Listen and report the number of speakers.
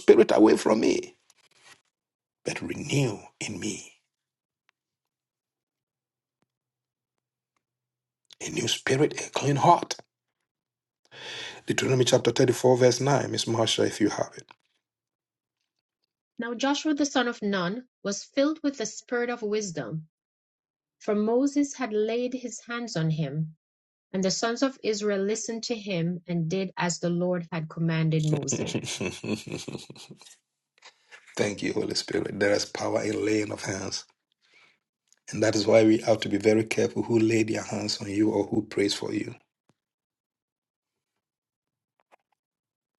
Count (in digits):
2